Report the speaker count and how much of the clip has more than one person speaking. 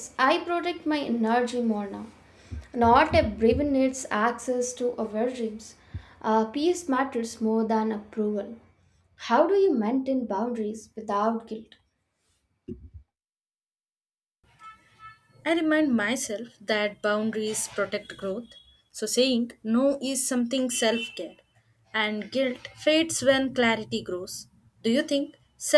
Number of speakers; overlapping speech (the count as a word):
two, no overlap